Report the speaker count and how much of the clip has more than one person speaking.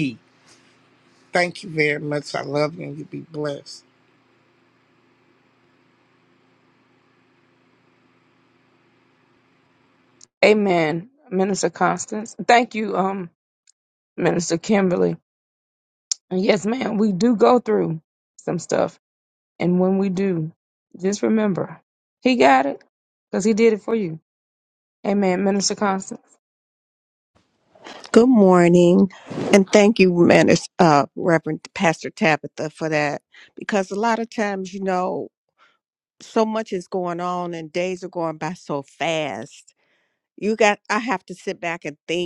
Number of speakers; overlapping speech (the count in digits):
3, no overlap